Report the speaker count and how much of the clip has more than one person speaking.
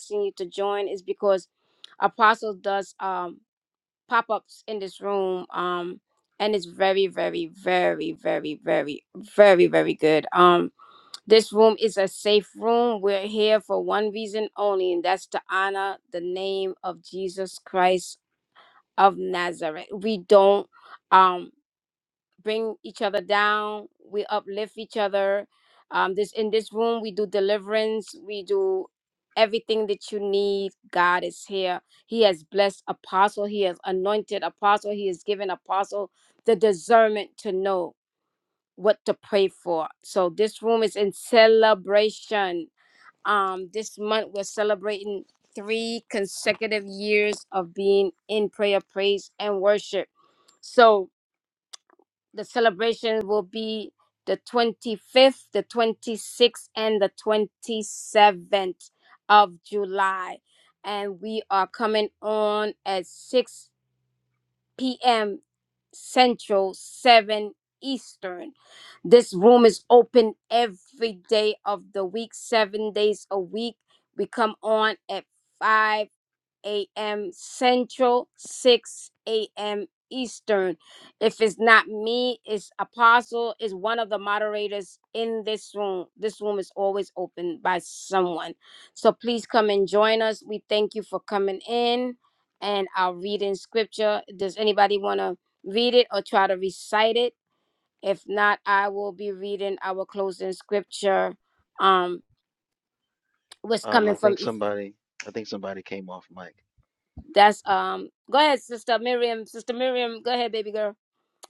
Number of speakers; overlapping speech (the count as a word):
two, about 1%